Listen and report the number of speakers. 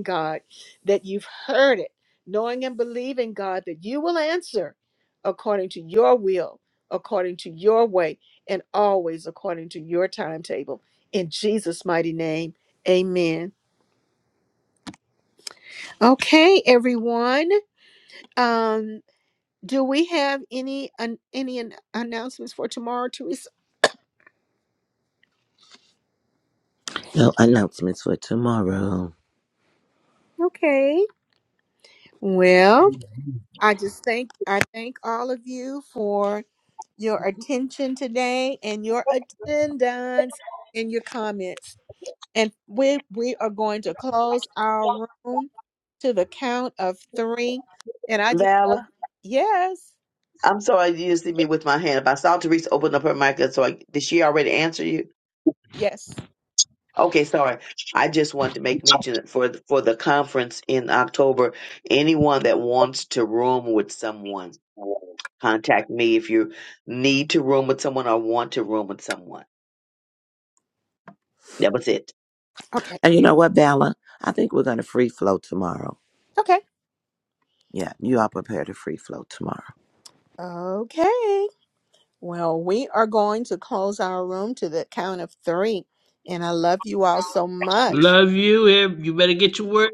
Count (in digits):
4